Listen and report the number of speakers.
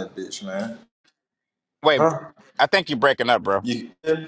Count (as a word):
two